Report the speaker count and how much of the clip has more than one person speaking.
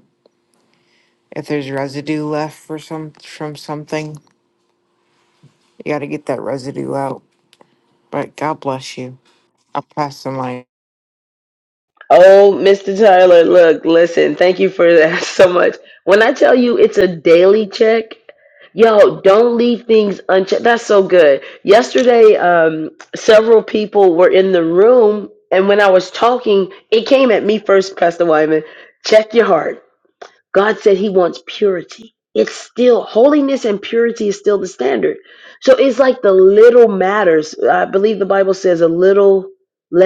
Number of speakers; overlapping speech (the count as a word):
two, no overlap